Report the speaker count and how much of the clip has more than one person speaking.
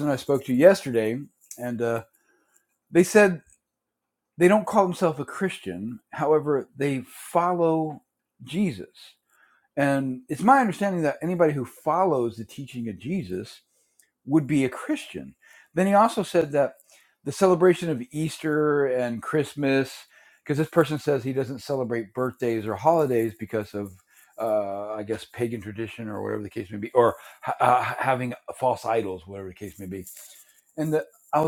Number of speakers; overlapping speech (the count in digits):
1, no overlap